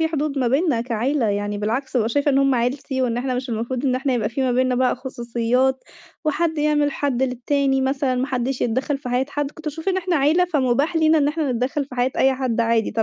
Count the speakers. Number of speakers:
one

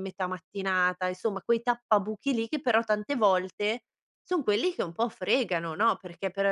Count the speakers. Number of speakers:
one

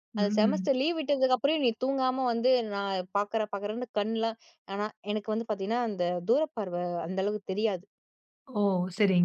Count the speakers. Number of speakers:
two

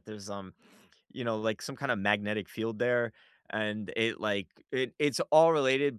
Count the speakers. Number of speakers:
one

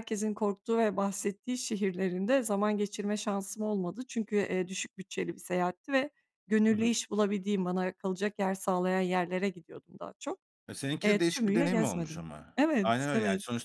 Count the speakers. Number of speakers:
two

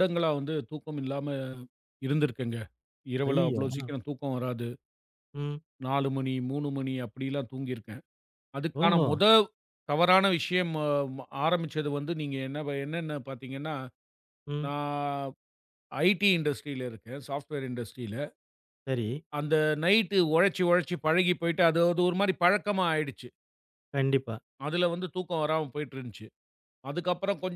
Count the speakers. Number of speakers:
two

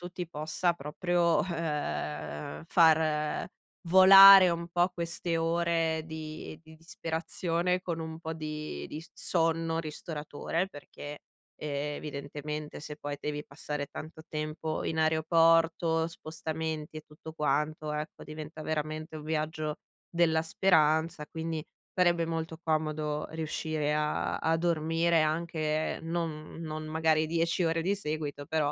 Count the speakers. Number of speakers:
one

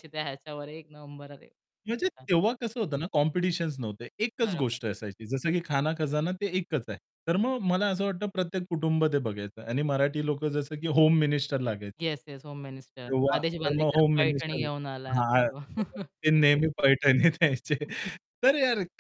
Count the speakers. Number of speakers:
two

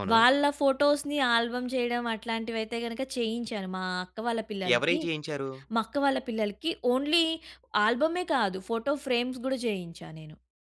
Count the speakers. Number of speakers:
two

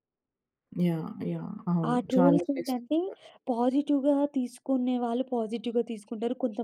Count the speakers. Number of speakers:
two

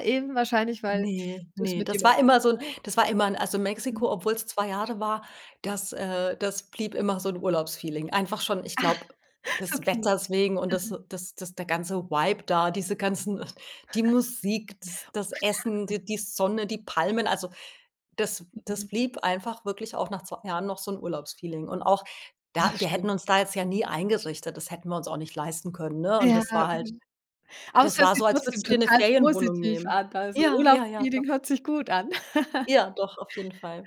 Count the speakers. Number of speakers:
two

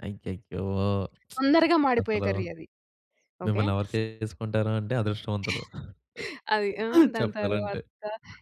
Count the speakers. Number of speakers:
two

